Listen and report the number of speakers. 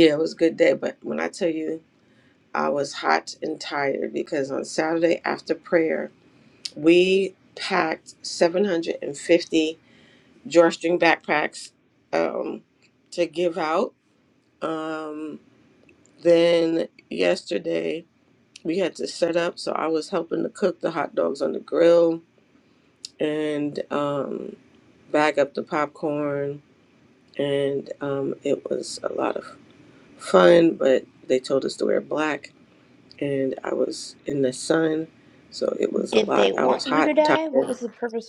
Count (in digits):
2